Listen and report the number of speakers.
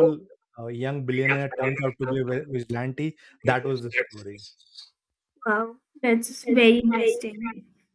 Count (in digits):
2